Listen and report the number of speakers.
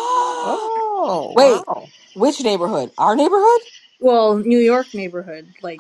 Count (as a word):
three